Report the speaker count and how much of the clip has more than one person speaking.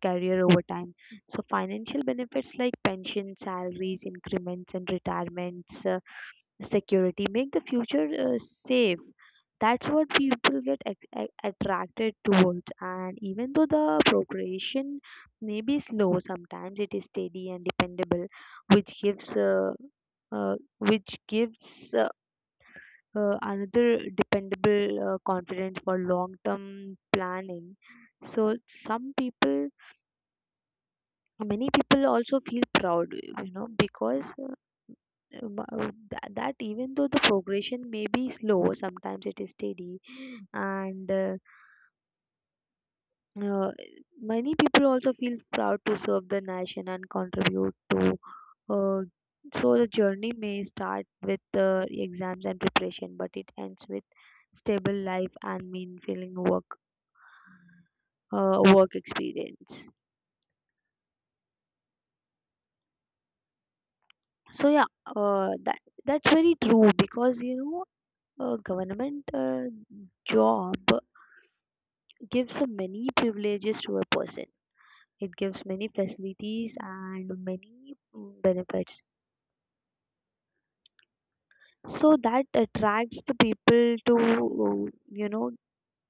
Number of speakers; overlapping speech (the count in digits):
1, no overlap